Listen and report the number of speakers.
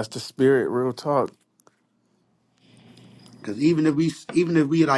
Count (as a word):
two